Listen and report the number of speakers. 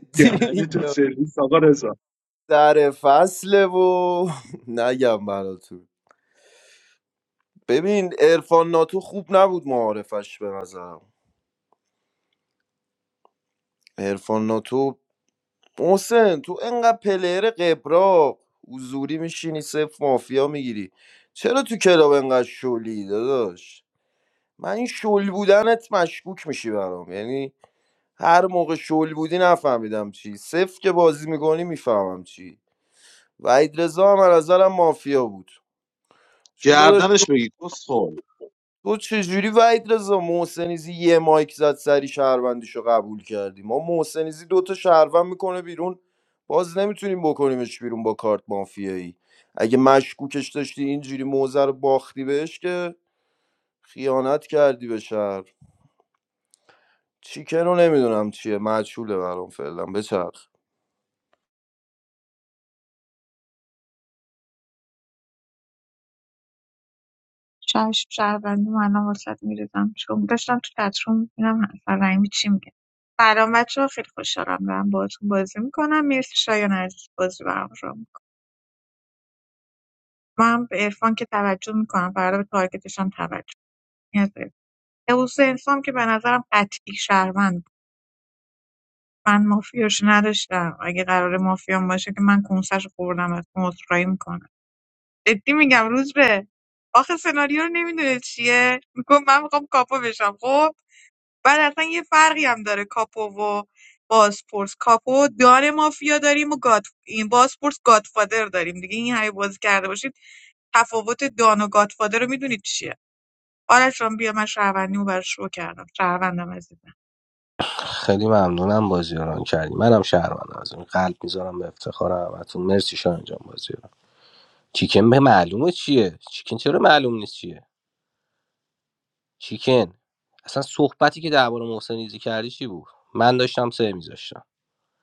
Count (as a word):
five